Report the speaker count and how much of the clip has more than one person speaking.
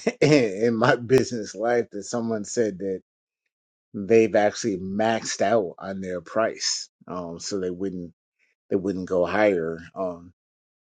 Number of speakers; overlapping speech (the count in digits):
1, no overlap